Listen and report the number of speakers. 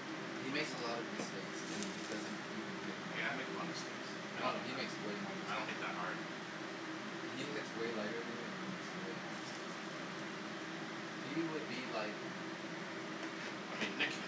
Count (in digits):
2